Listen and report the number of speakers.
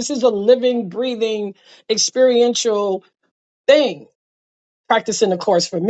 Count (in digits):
1